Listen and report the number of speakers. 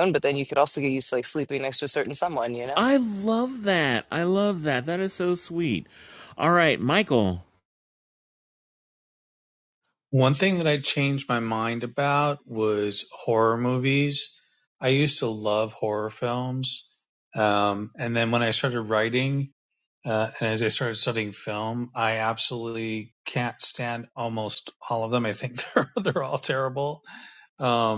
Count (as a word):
three